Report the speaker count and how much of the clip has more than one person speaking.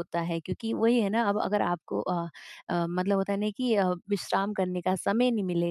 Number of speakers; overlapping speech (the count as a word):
one, no overlap